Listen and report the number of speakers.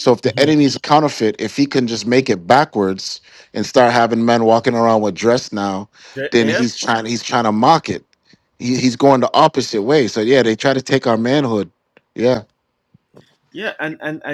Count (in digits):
2